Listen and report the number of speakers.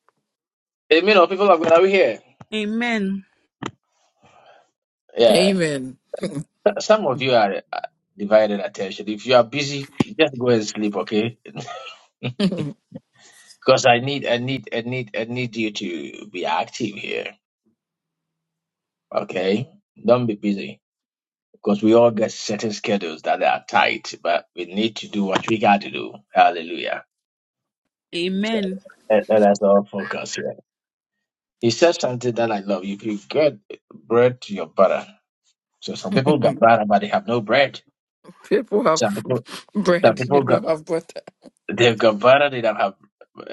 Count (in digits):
3